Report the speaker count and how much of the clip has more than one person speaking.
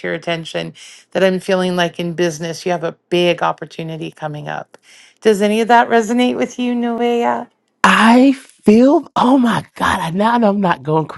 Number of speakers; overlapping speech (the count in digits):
2, no overlap